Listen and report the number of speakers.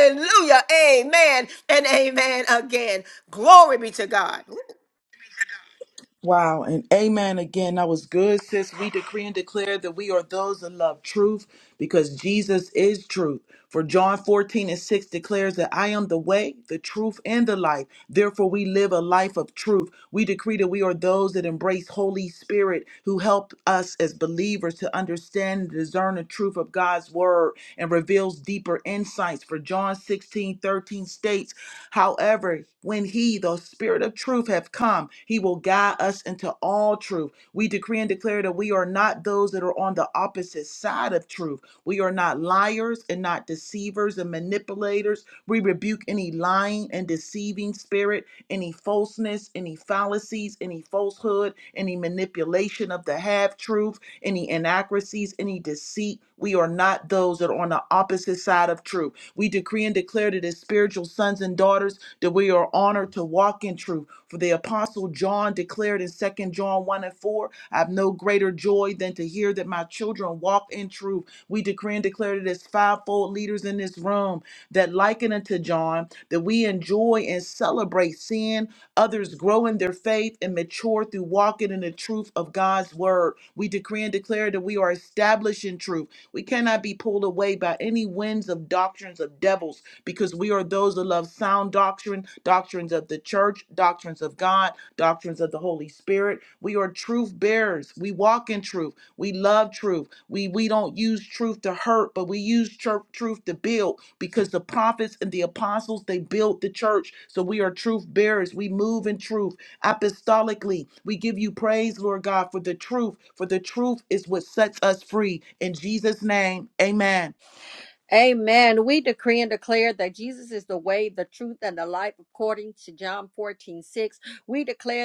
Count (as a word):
three